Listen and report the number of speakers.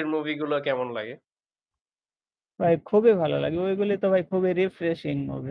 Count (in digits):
2